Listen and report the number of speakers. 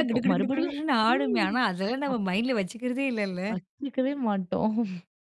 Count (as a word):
two